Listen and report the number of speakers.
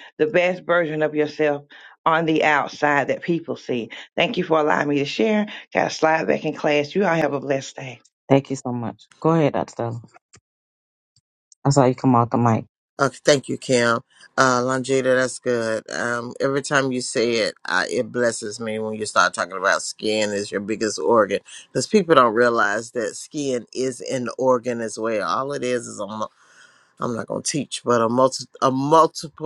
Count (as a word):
three